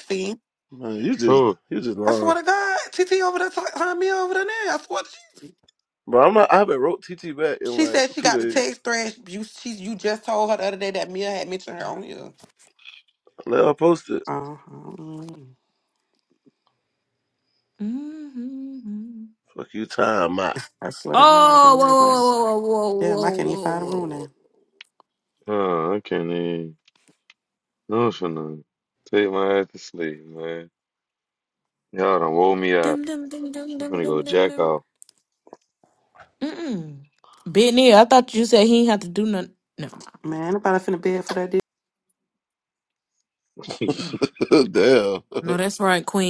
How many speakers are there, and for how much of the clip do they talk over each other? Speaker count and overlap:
four, about 11%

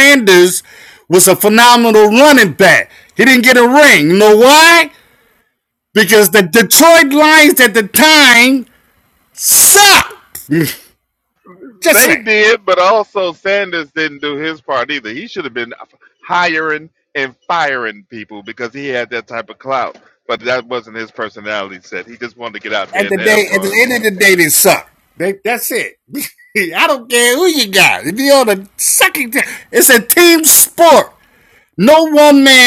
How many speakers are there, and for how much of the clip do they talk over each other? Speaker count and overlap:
two, about 4%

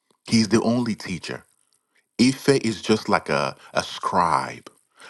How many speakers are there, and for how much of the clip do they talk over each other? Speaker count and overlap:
one, no overlap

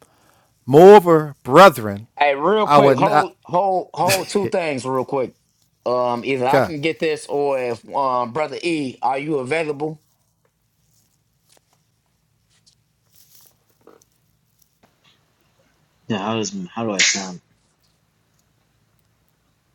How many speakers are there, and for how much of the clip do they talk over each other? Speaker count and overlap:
three, about 4%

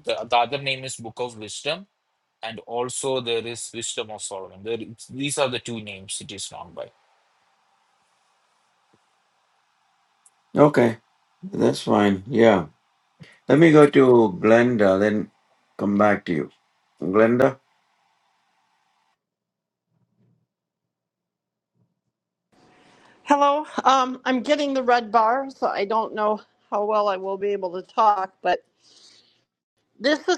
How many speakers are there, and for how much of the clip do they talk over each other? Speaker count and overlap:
three, no overlap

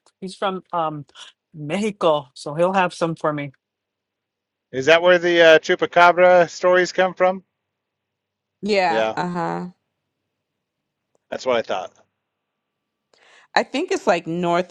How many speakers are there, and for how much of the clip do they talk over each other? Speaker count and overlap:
three, about 2%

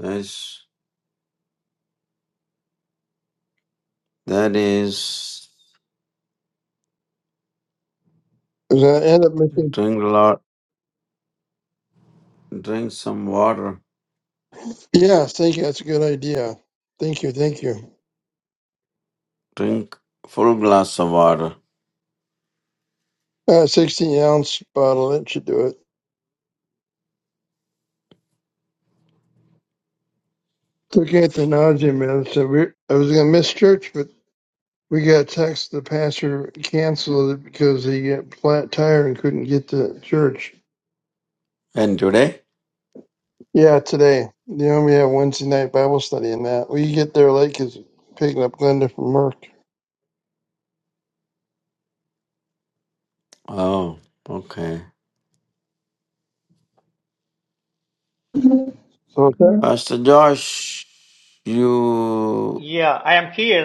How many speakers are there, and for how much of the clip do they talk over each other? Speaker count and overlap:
three, no overlap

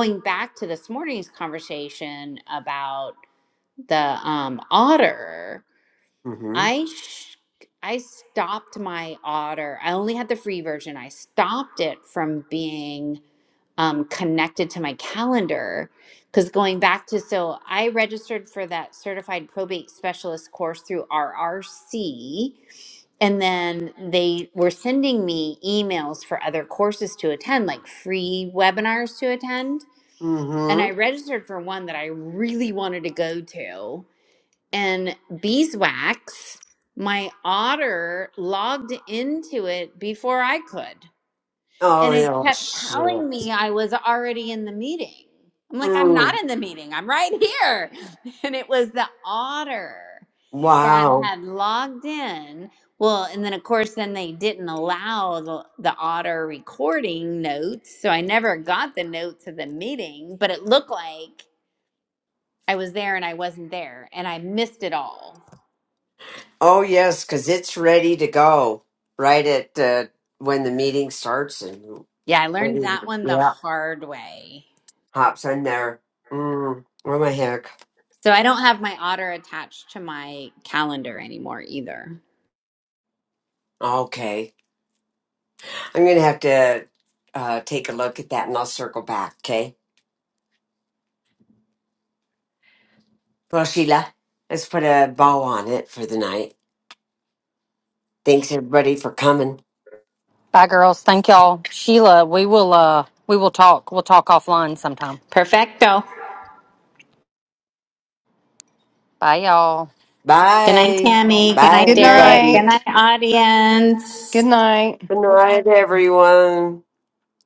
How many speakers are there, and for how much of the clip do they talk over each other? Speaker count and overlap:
four, about 5%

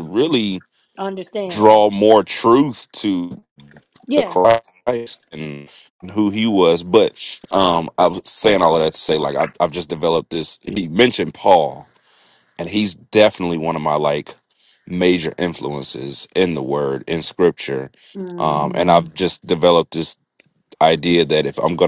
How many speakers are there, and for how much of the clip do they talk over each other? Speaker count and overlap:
two, about 3%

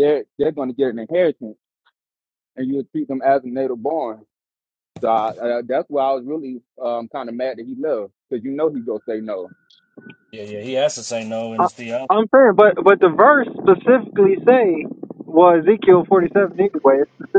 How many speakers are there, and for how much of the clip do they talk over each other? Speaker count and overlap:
three, about 1%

